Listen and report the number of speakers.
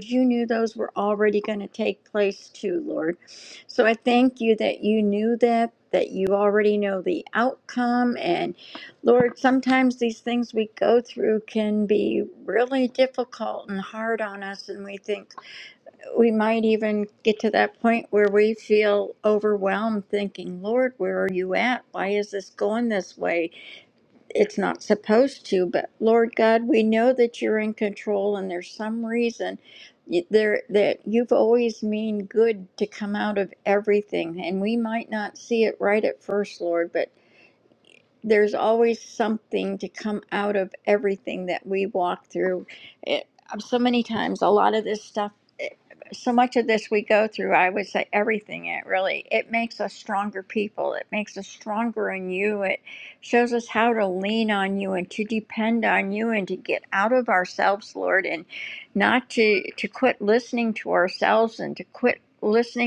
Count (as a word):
one